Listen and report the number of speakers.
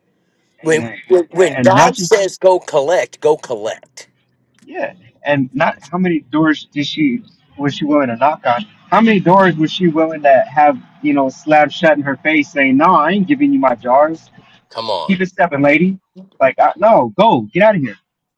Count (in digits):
2